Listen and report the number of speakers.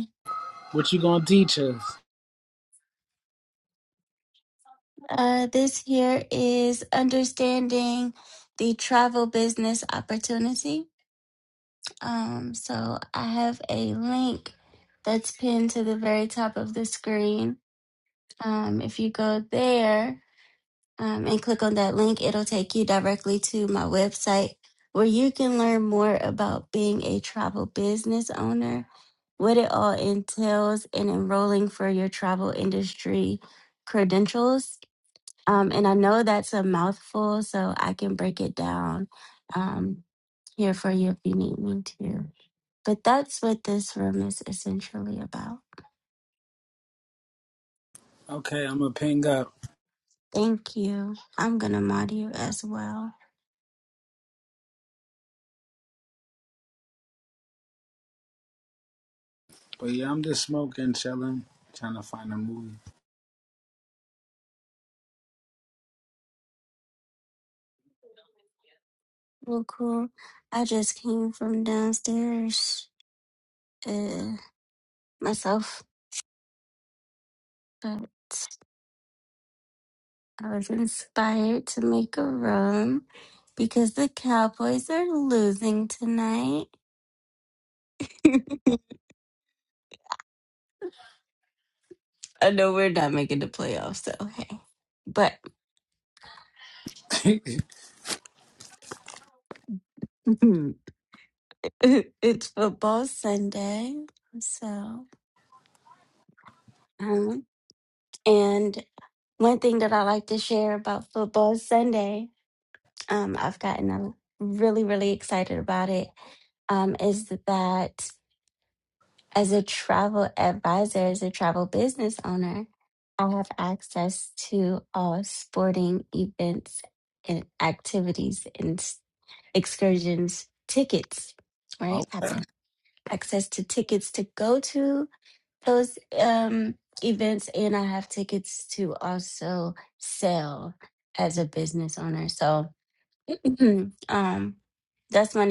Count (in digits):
2